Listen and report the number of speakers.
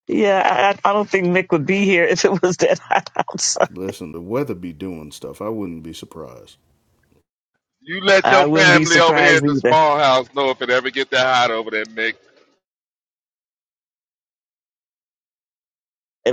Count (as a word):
three